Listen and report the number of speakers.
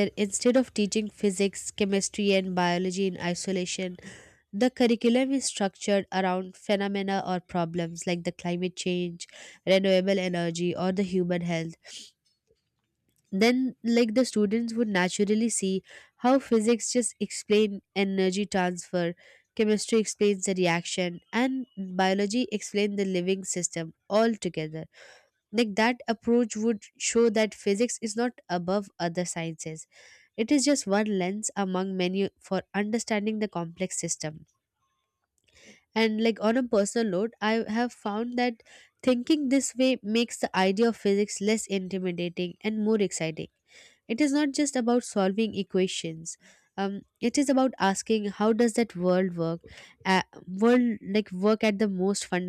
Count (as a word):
one